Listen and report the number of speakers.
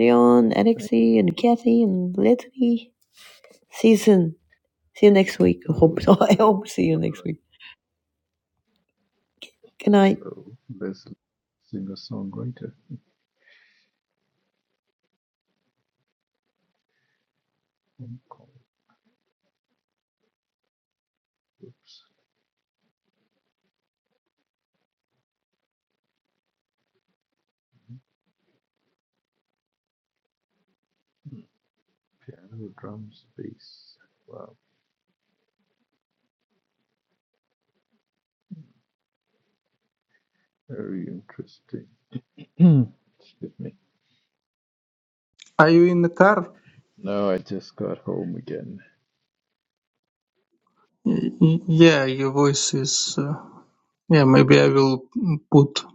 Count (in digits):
3